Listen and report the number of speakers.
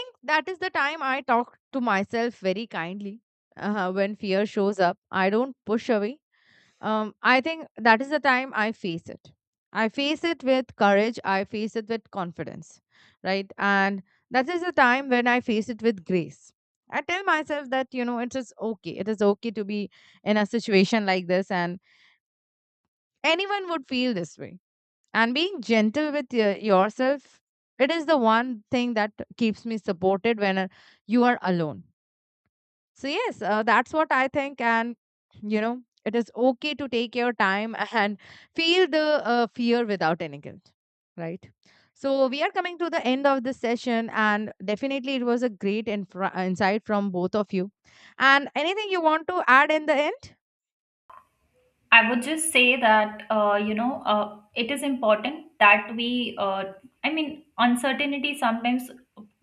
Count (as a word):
two